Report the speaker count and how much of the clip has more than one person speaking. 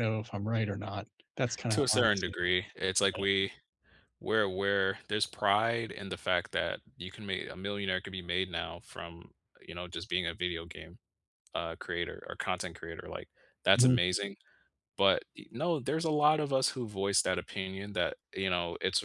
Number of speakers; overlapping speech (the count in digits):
2, about 5%